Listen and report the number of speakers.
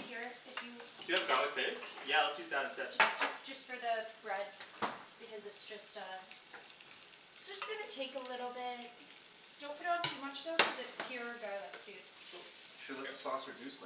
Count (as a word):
three